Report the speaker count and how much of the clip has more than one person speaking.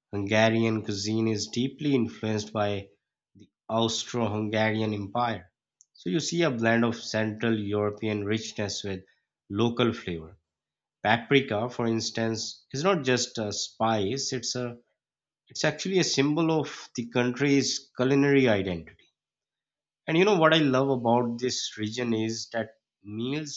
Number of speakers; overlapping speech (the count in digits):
1, no overlap